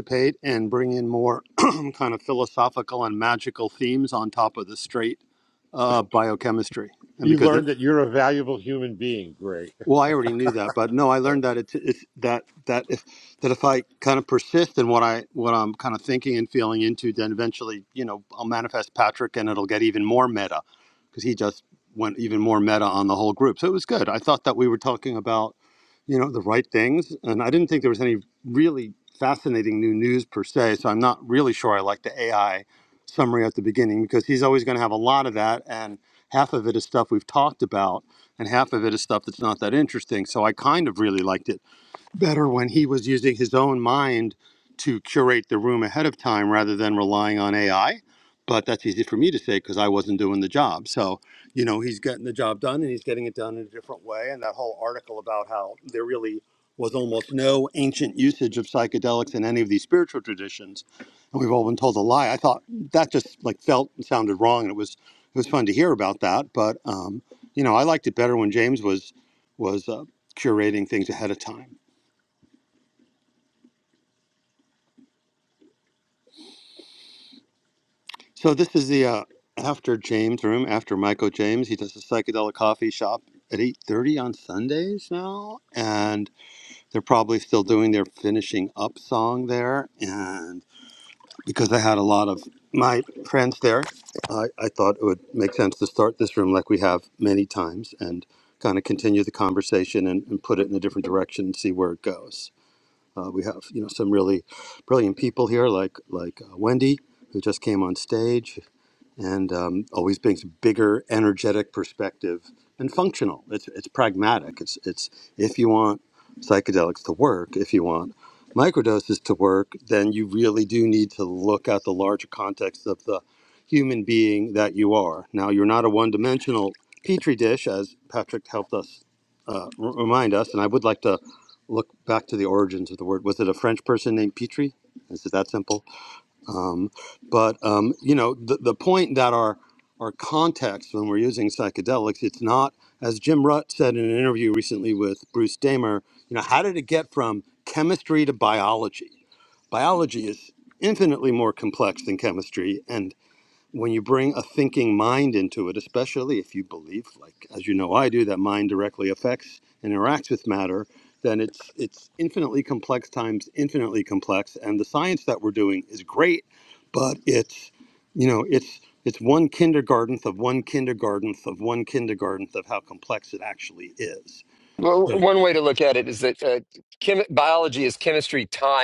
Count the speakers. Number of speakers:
three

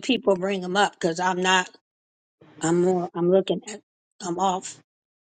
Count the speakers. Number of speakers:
one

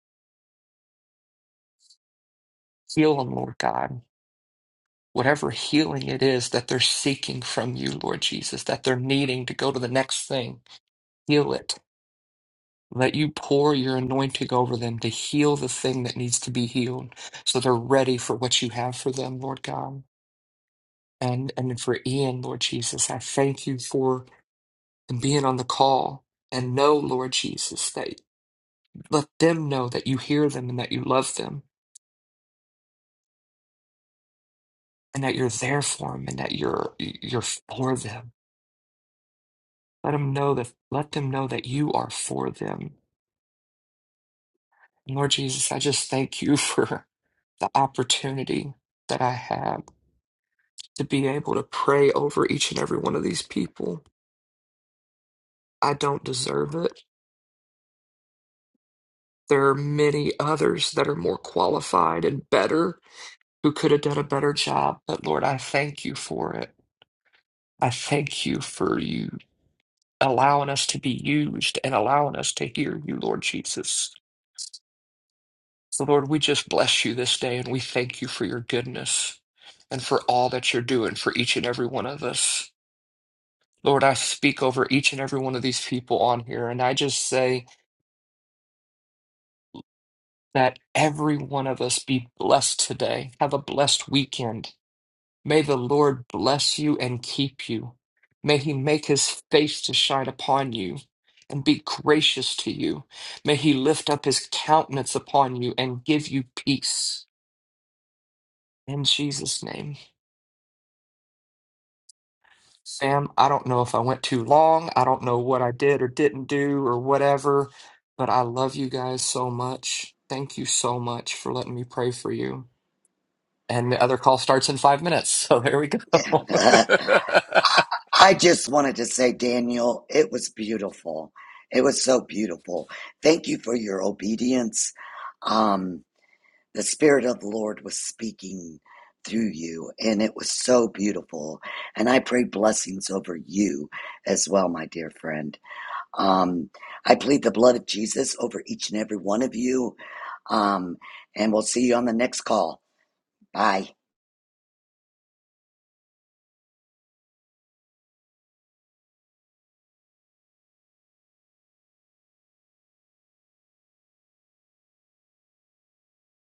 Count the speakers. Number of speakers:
two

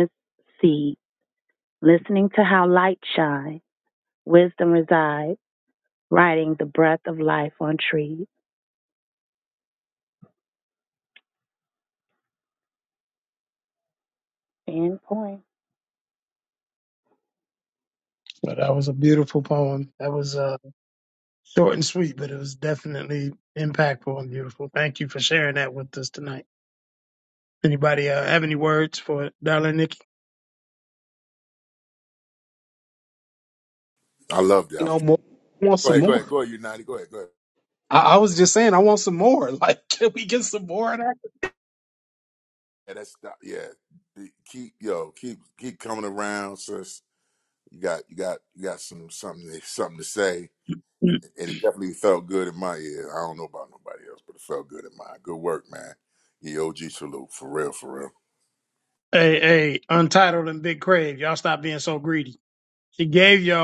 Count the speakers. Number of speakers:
four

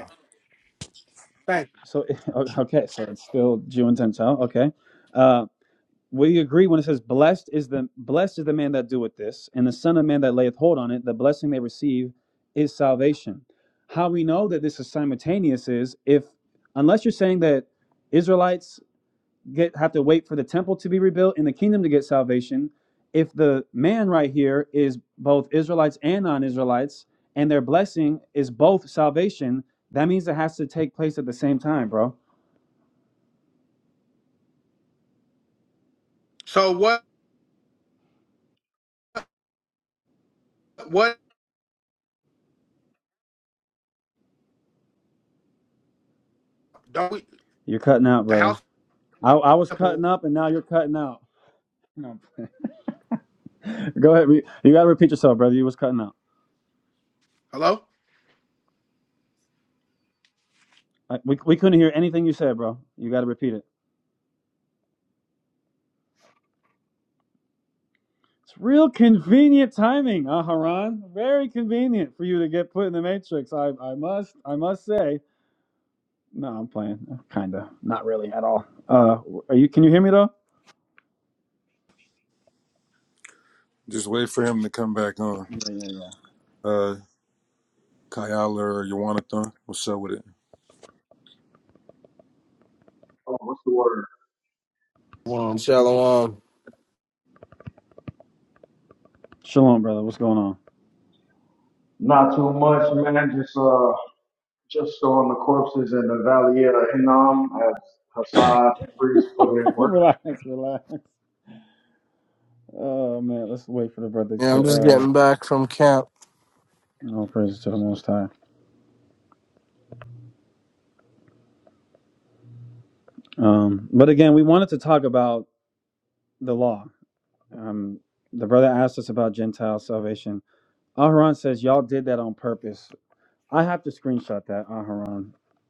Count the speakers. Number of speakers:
five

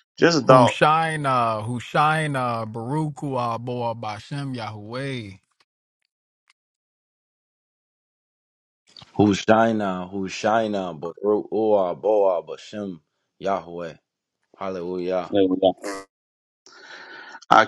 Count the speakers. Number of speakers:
three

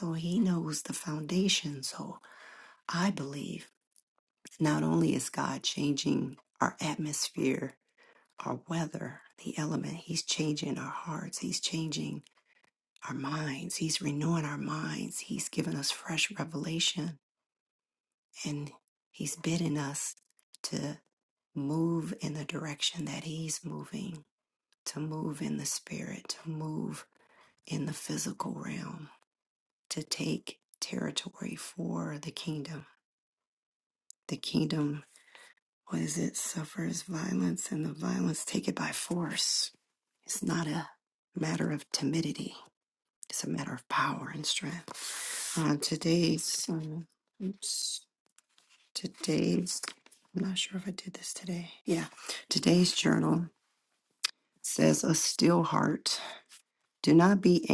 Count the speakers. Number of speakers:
one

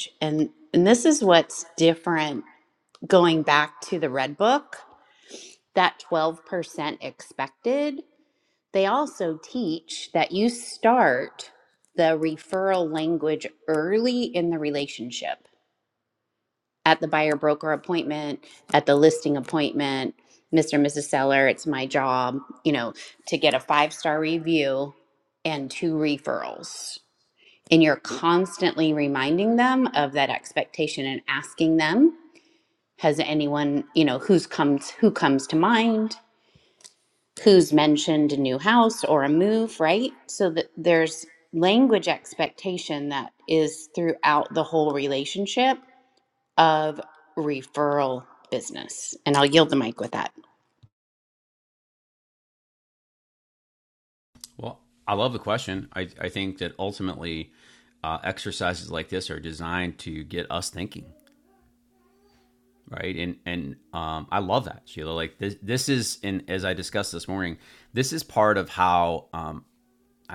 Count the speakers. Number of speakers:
two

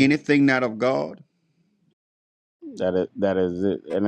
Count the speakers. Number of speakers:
two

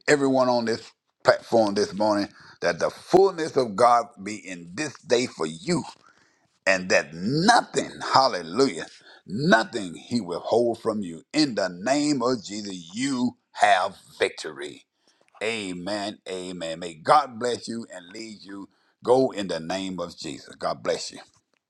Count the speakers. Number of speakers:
one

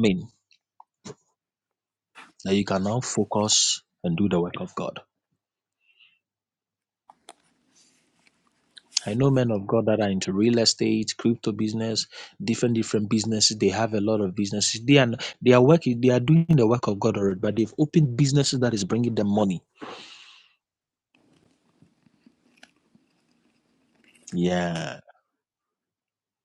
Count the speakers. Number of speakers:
one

